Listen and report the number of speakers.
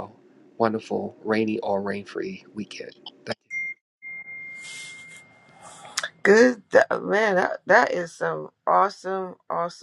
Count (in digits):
2